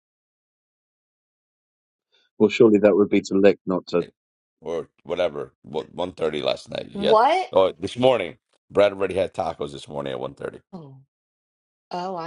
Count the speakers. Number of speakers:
3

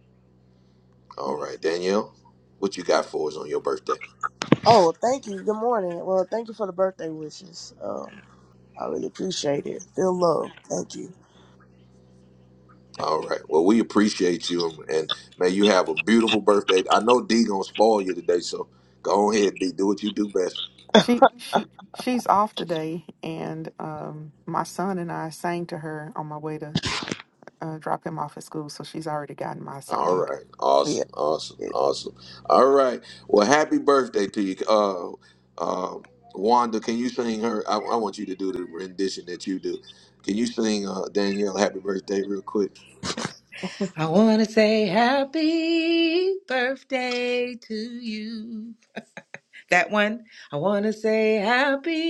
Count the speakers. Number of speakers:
4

